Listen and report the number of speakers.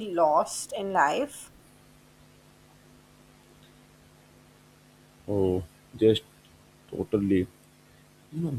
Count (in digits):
2